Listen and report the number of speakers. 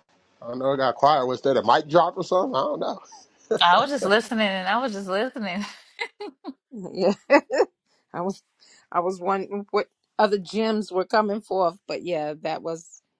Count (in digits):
3